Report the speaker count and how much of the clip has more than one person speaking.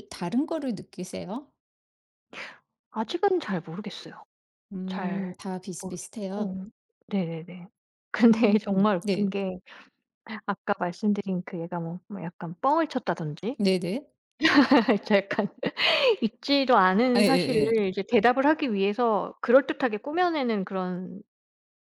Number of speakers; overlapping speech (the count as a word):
two, about 11%